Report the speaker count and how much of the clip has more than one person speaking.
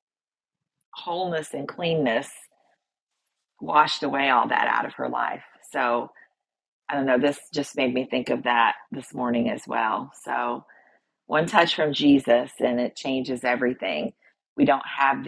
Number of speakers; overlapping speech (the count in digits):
1, no overlap